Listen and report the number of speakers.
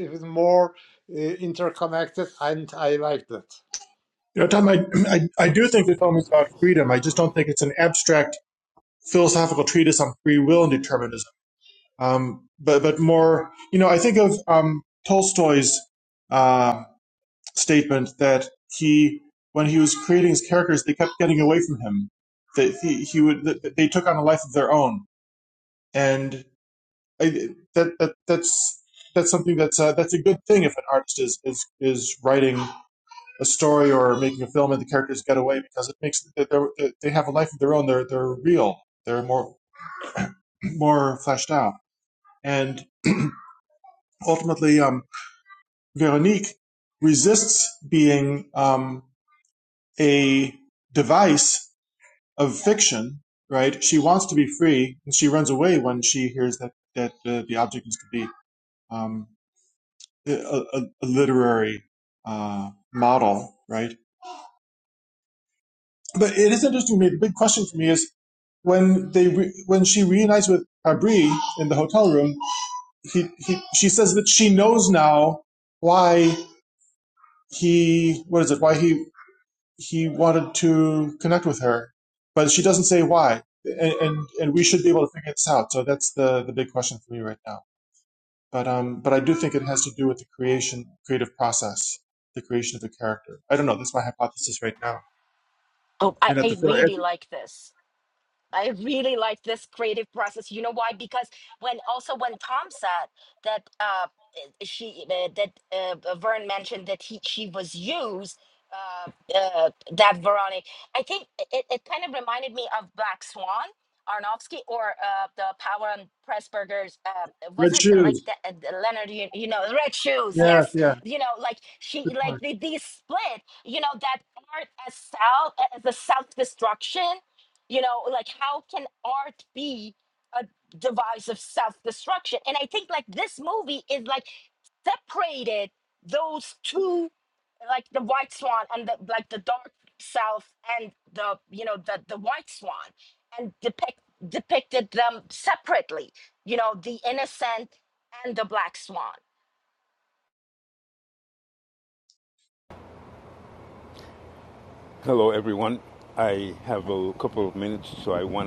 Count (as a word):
four